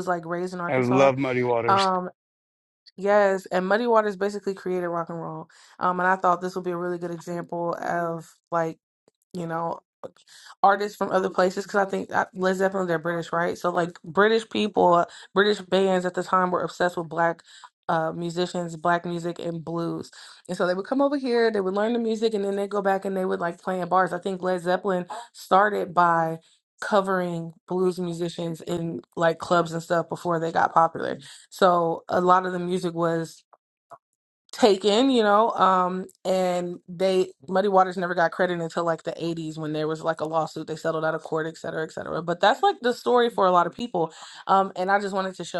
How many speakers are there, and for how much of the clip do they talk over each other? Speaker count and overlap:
two, about 1%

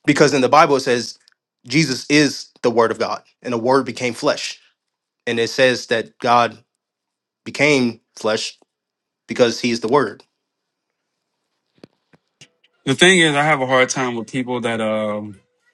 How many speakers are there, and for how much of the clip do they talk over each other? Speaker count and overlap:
two, no overlap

